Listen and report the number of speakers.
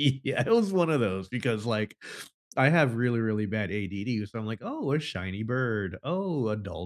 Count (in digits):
1